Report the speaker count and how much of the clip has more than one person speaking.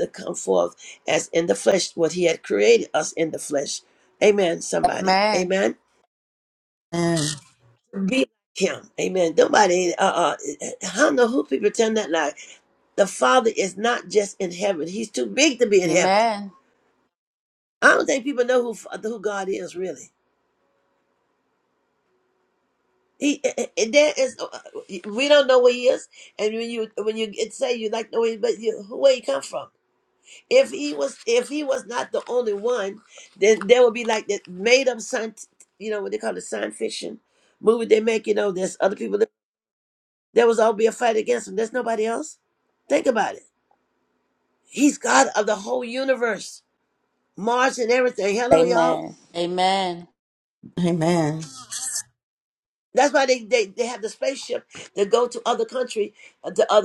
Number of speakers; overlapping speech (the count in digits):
3, about 2%